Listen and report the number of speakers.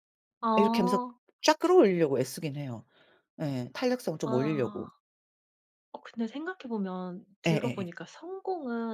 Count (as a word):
two